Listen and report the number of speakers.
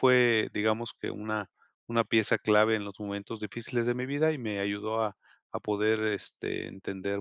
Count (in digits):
1